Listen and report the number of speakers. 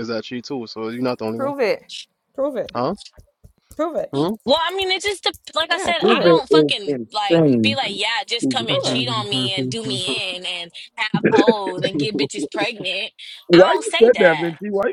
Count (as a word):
four